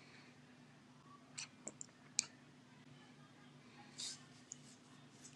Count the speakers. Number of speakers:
0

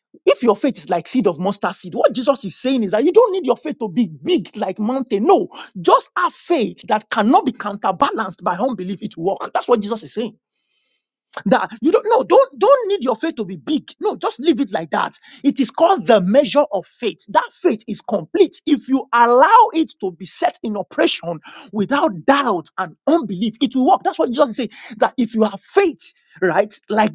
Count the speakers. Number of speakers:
1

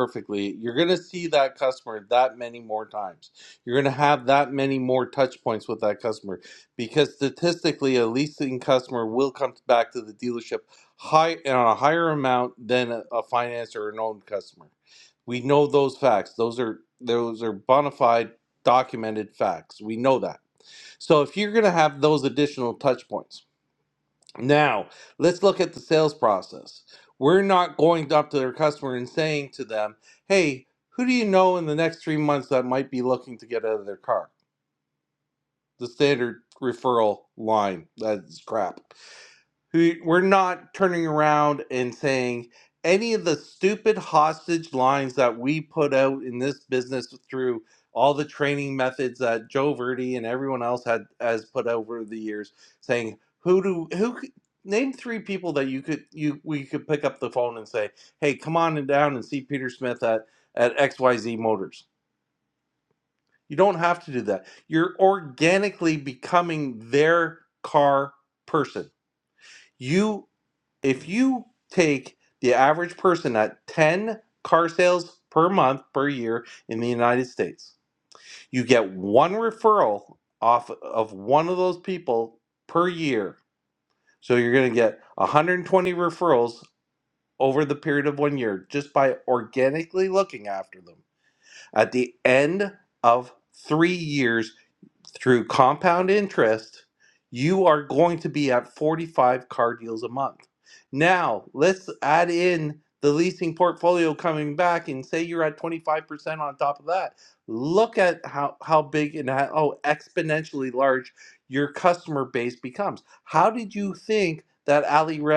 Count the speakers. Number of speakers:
1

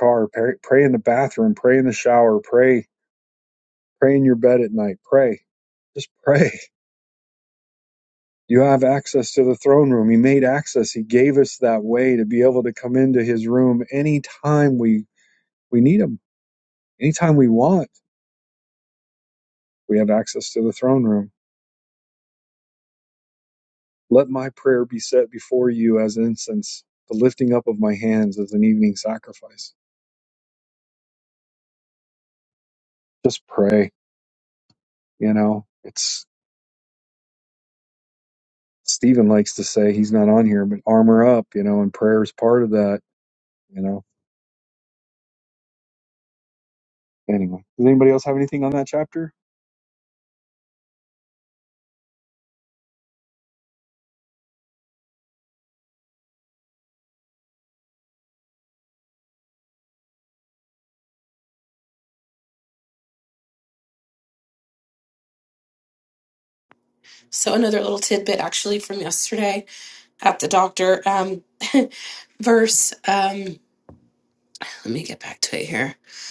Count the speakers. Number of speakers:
2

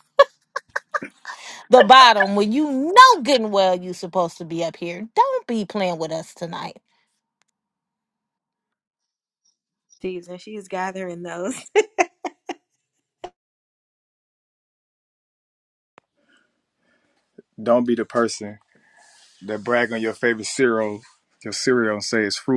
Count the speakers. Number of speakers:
3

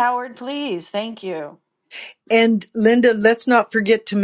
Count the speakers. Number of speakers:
2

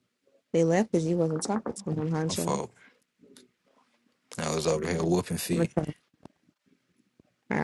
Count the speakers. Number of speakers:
2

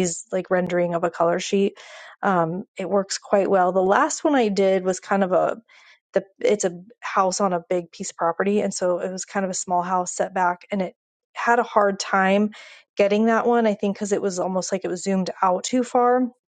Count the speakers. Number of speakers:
1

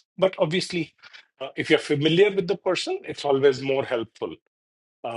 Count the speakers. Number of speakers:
1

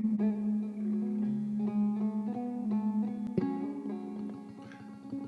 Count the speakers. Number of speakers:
0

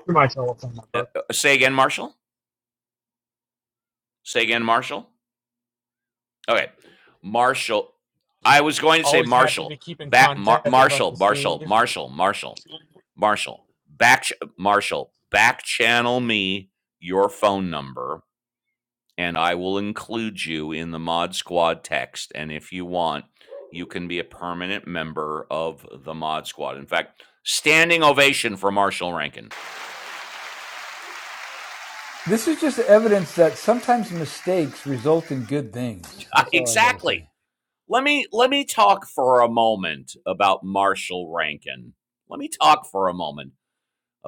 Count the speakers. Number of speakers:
3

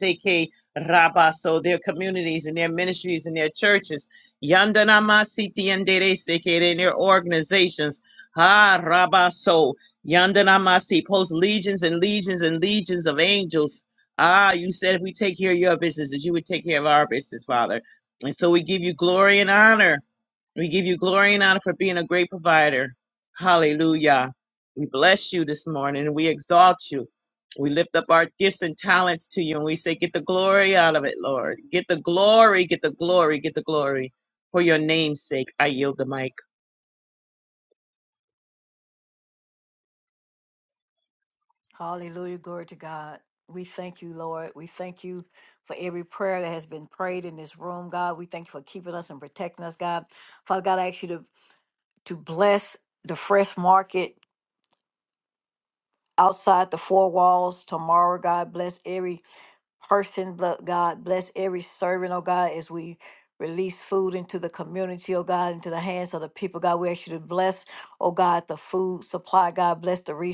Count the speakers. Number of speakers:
2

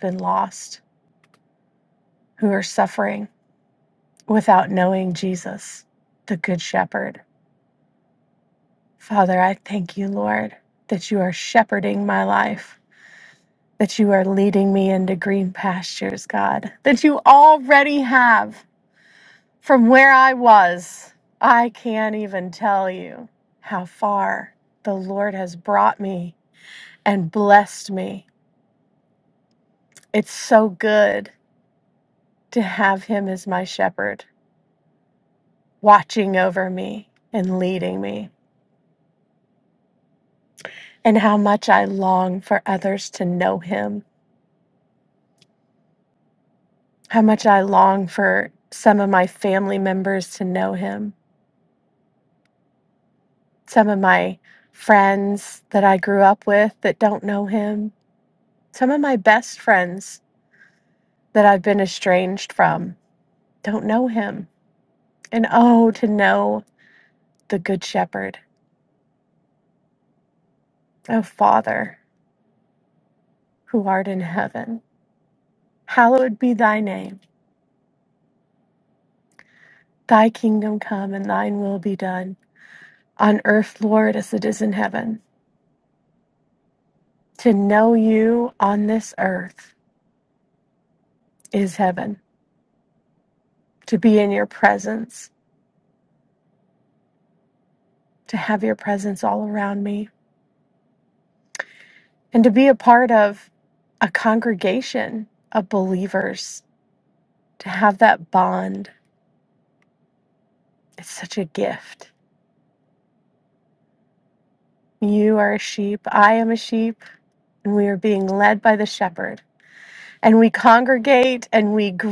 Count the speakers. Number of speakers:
1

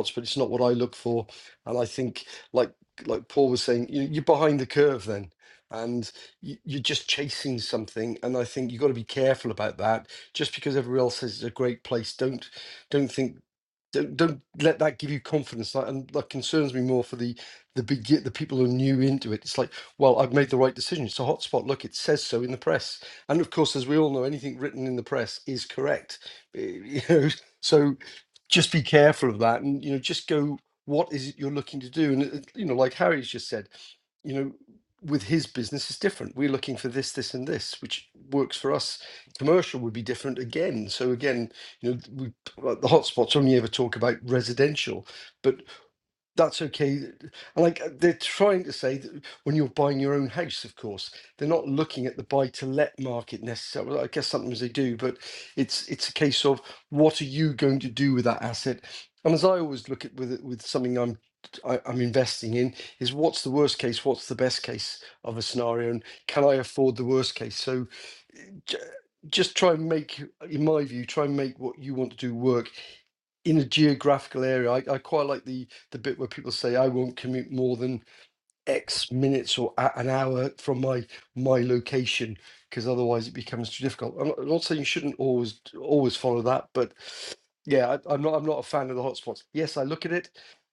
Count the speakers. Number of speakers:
1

